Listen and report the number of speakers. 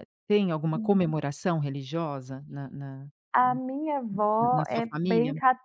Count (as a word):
two